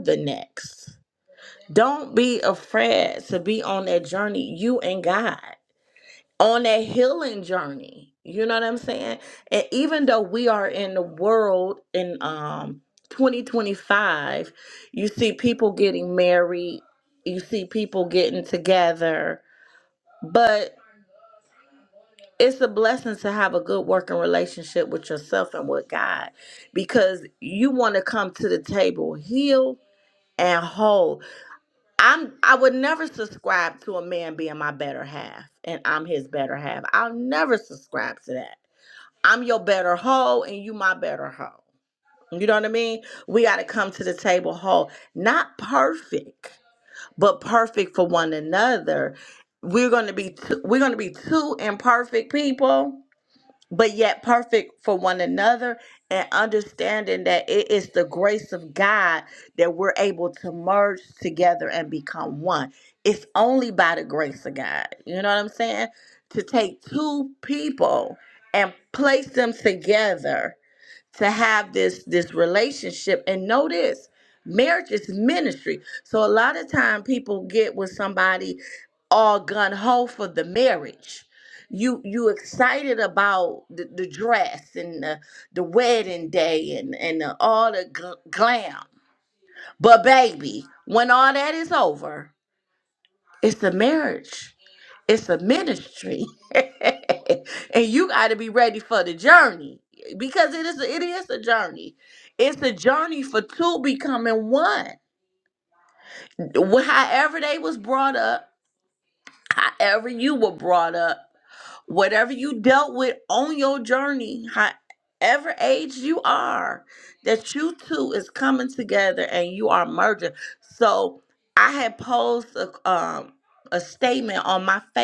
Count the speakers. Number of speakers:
1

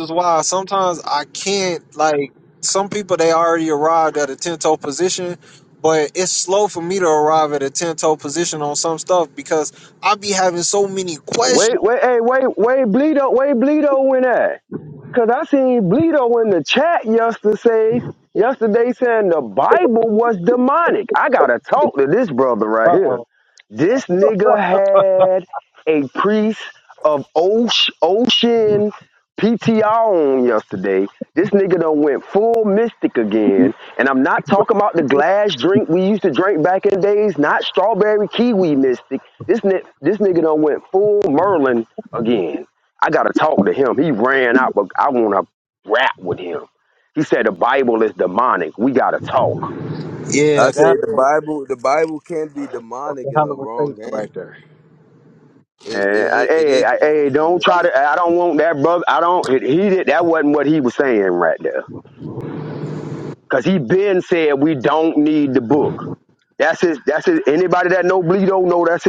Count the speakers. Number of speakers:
3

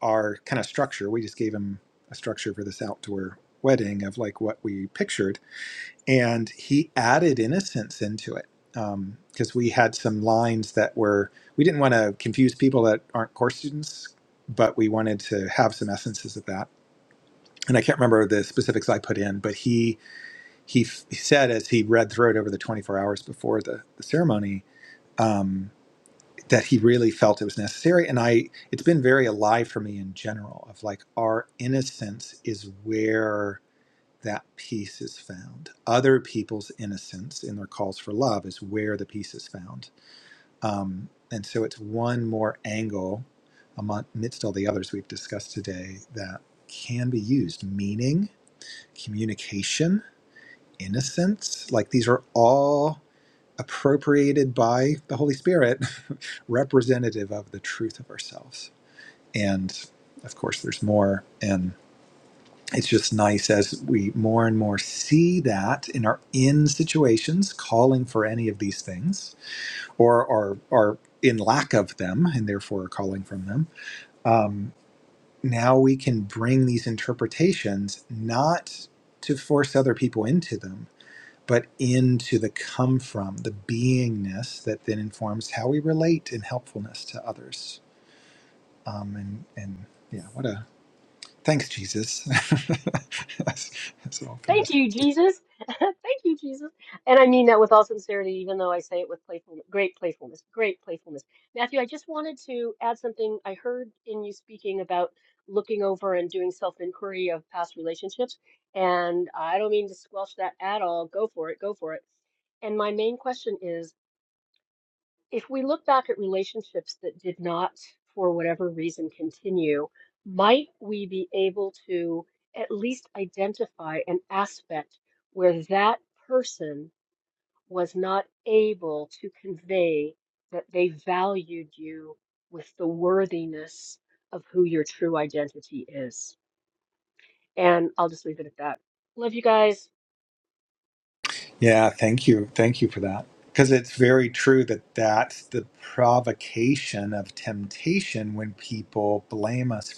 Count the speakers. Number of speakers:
2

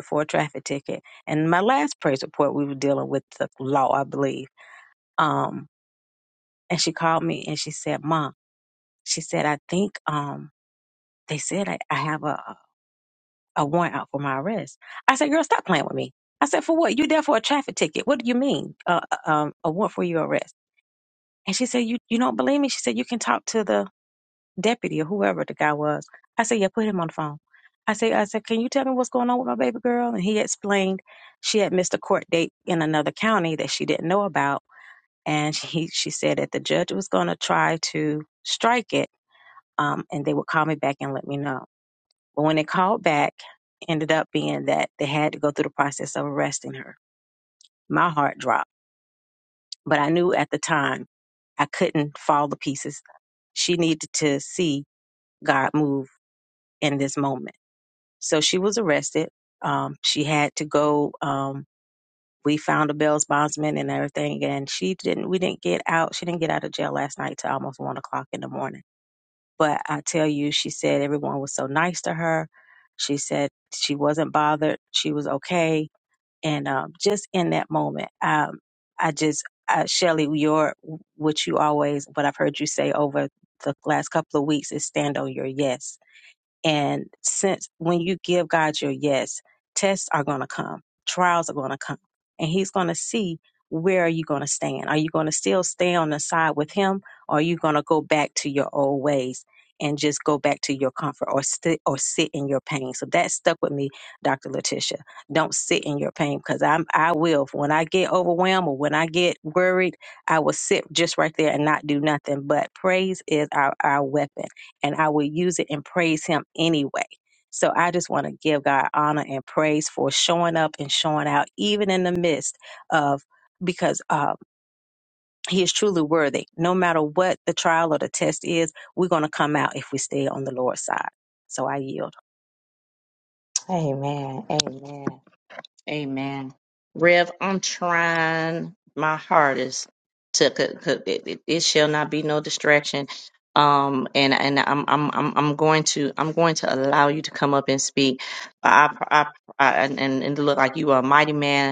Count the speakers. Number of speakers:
2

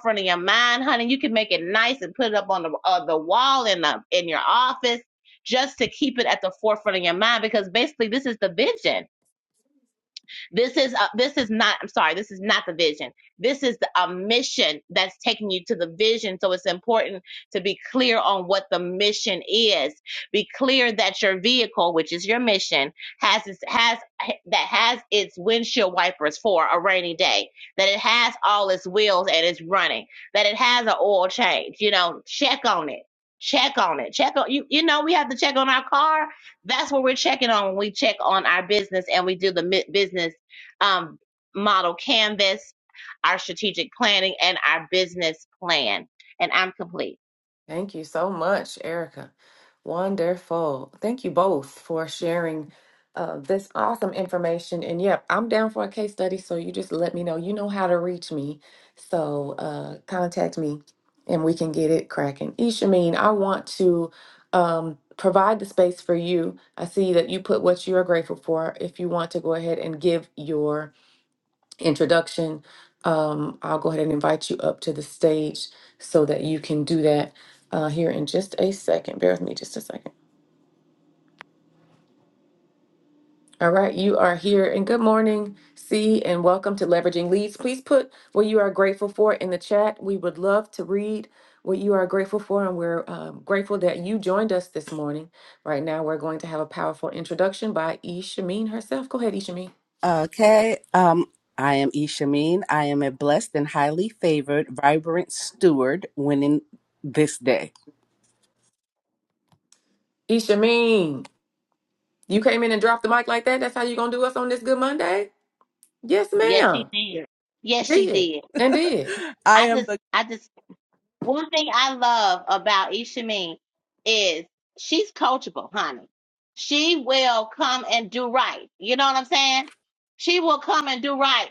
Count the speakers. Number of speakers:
3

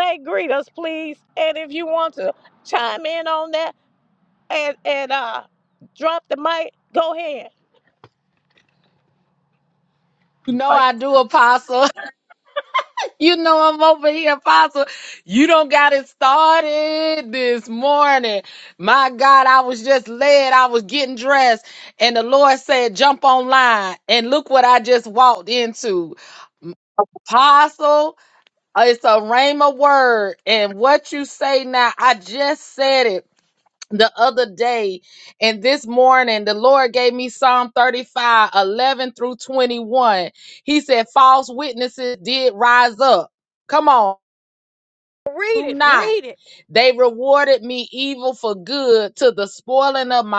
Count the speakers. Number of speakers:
2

